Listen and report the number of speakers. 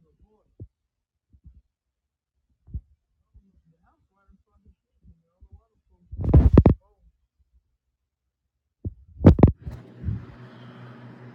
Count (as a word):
zero